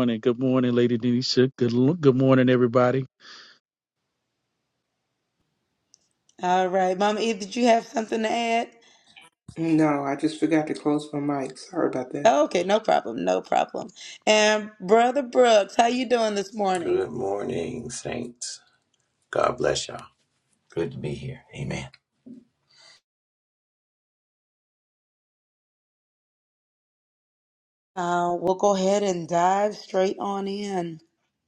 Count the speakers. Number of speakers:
four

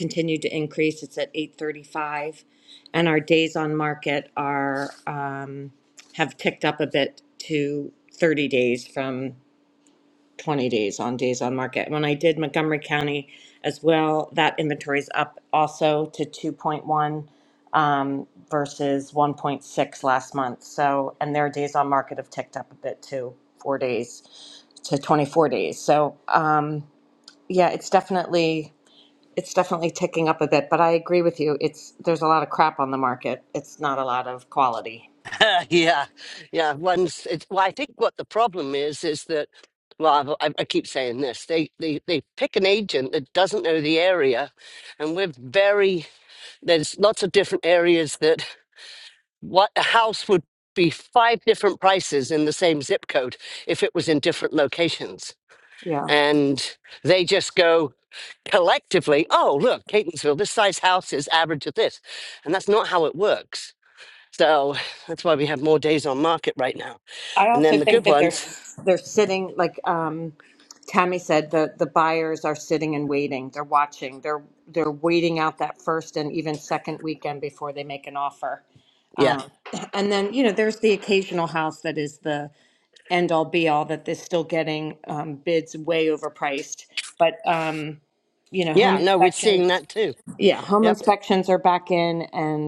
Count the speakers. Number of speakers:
two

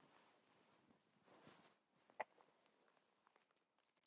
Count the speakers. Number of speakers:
zero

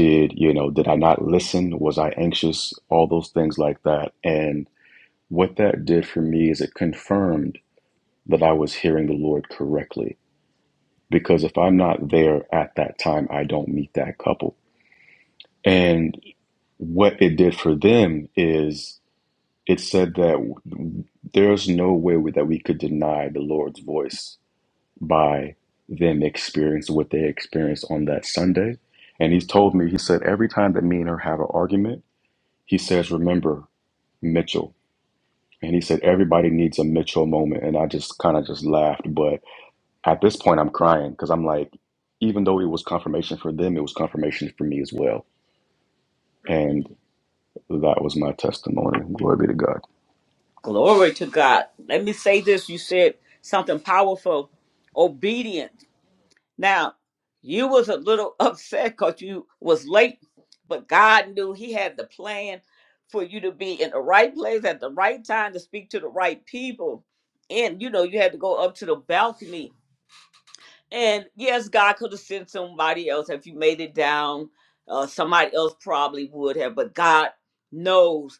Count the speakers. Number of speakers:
two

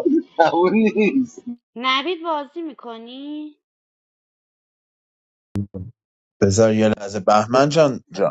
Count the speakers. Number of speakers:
three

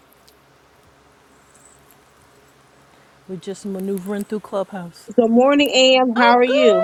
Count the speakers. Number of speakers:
two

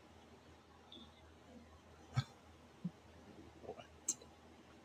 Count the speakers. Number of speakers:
zero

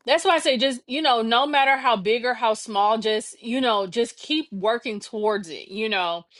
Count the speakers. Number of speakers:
one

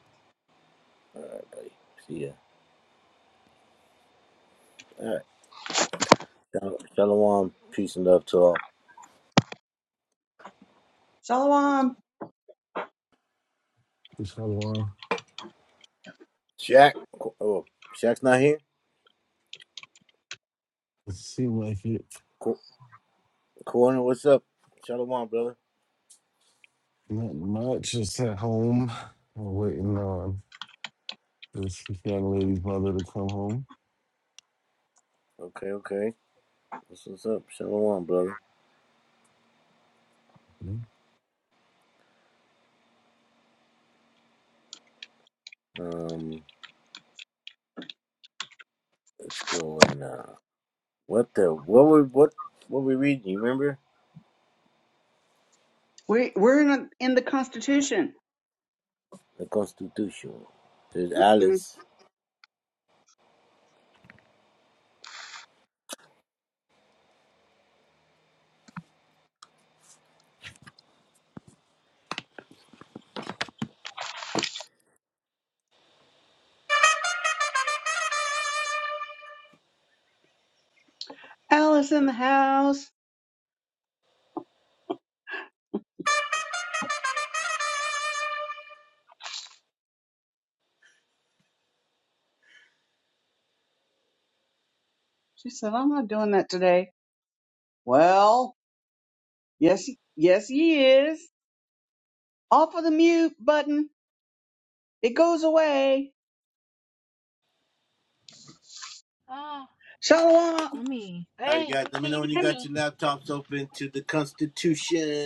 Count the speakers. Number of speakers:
four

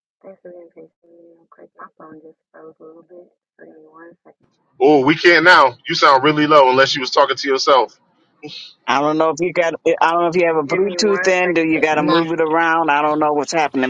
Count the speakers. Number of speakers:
three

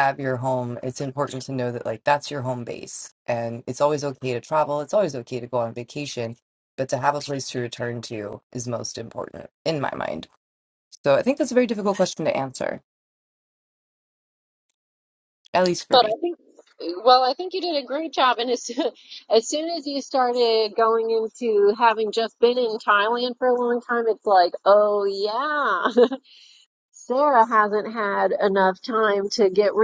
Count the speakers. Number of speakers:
two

